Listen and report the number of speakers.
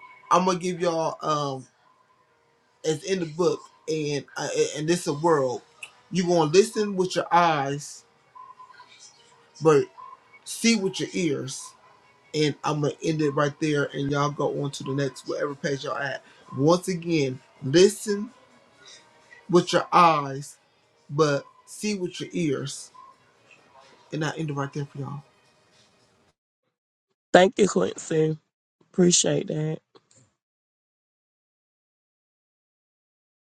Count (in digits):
2